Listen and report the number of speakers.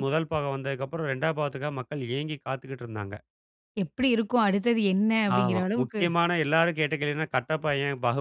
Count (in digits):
2